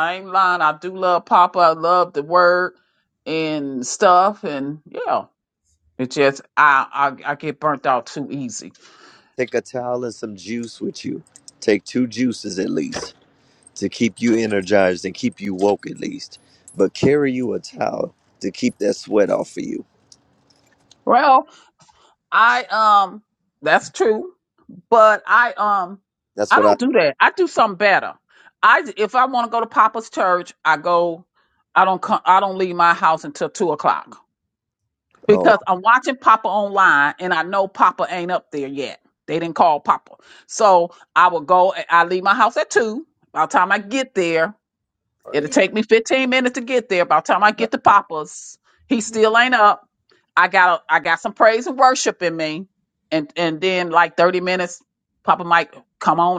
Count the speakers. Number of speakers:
2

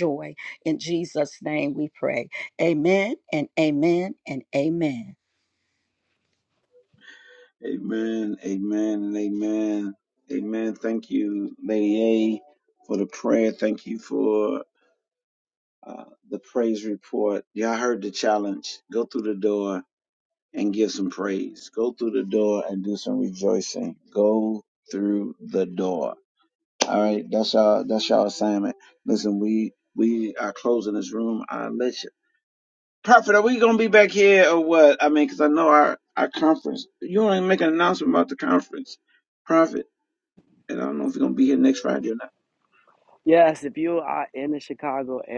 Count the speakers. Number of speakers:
3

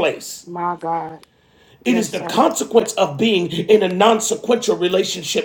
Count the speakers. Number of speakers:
2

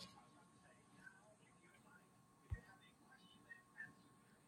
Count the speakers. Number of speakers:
0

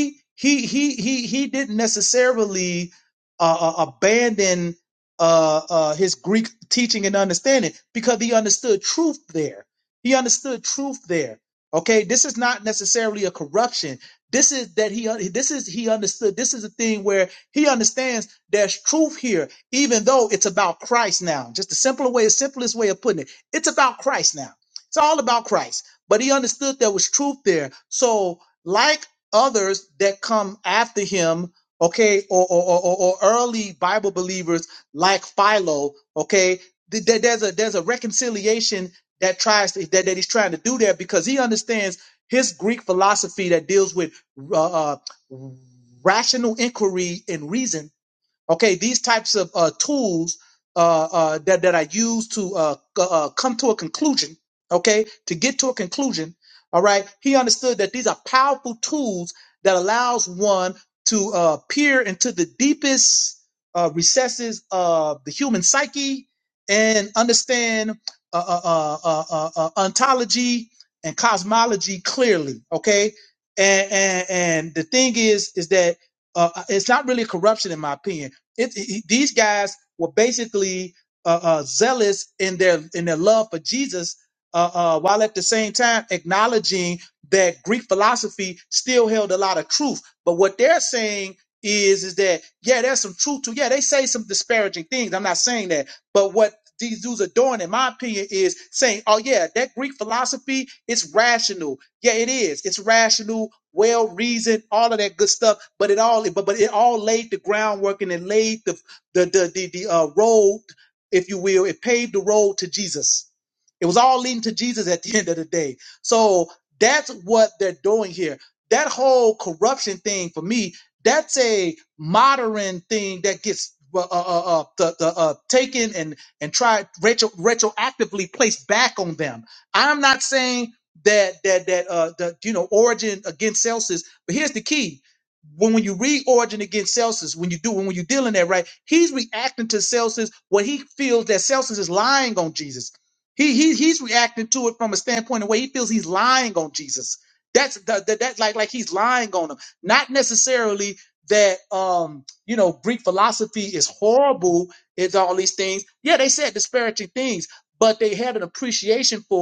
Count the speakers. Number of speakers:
1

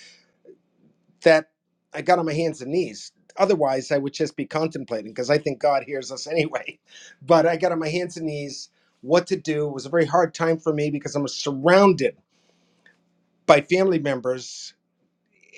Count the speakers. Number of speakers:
1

